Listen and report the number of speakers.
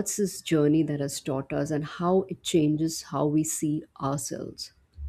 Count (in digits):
1